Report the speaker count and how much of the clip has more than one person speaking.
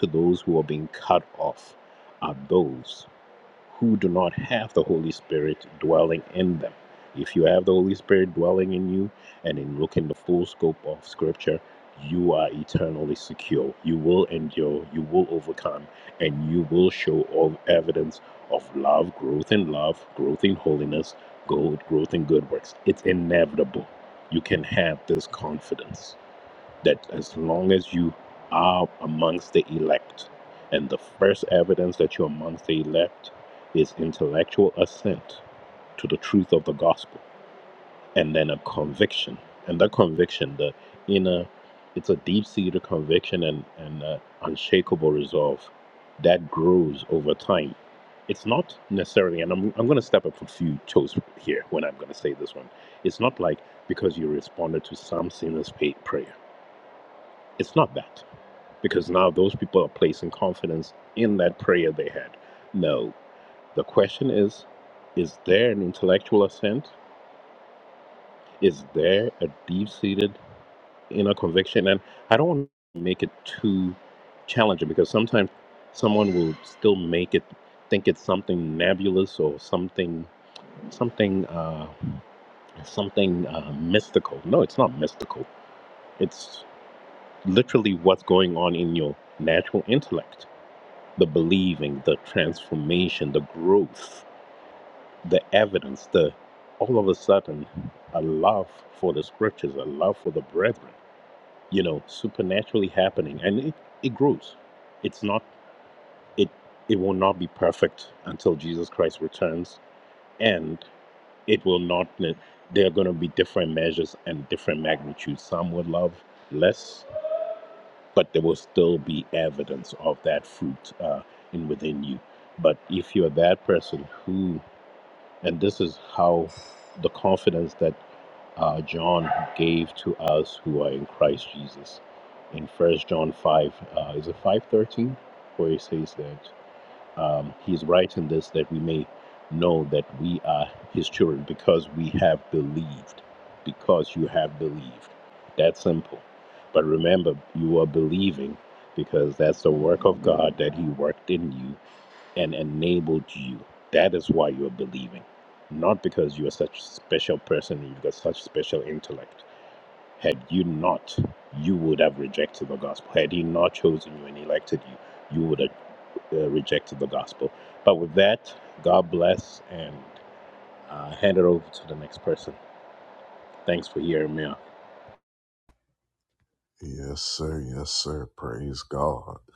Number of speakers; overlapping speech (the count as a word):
two, no overlap